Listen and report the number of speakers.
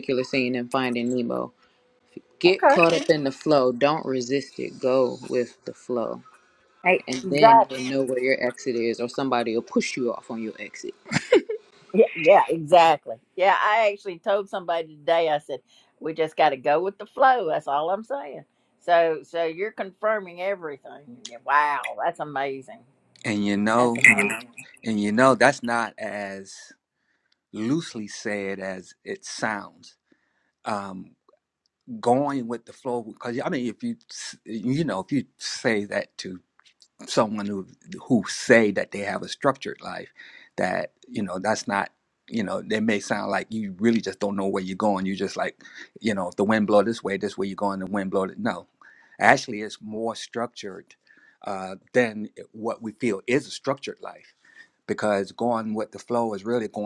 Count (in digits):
3